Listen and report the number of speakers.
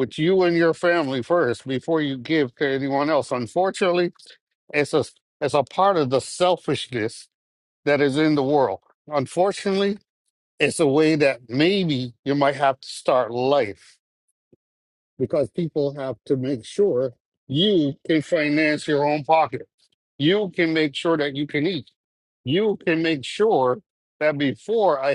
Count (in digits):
1